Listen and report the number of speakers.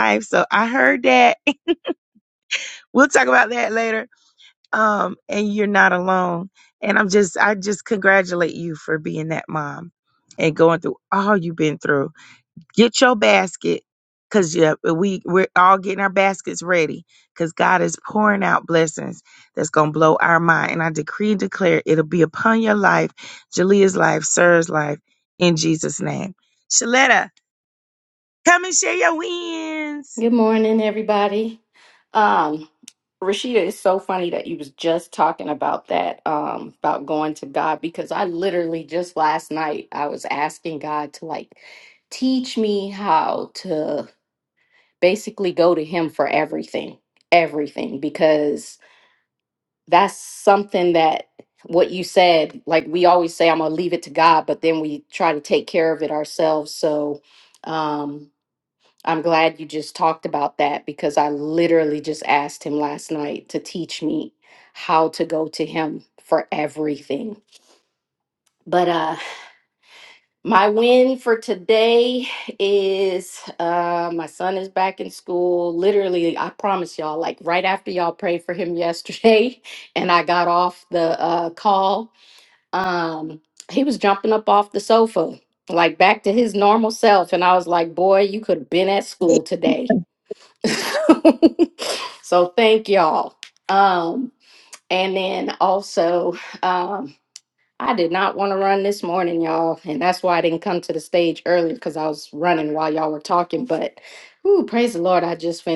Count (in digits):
2